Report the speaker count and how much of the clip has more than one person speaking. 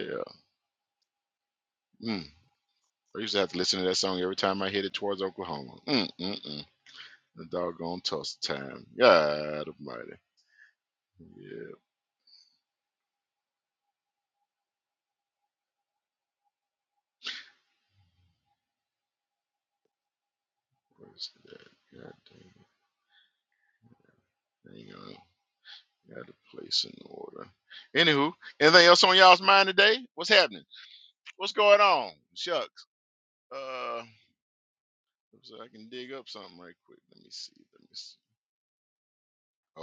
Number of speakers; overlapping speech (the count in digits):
1, no overlap